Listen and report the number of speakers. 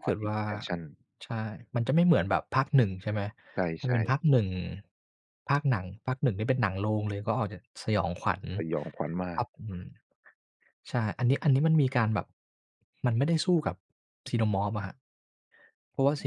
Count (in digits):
2